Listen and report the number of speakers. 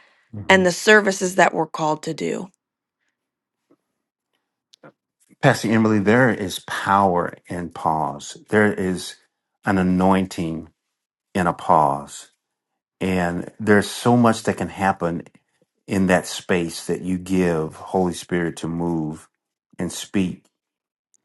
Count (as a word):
two